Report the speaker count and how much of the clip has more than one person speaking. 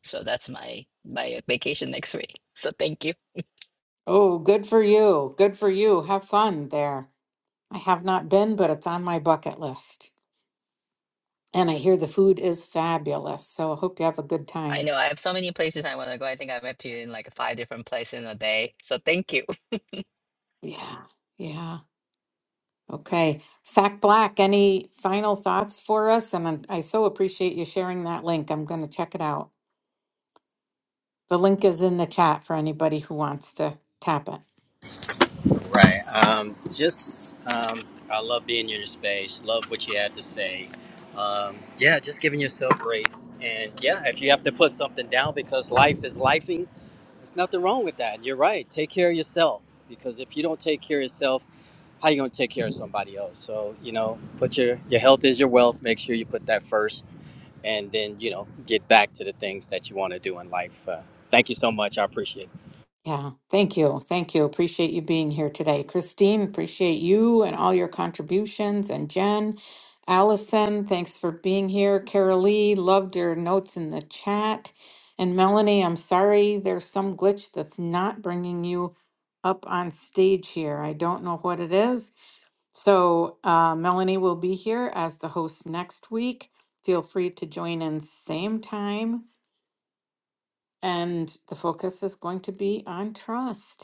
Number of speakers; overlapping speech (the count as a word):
three, under 1%